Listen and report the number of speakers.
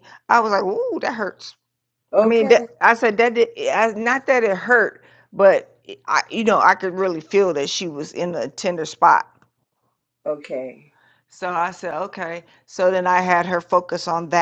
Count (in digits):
2